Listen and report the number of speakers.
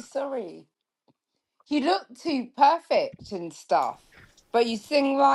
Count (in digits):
1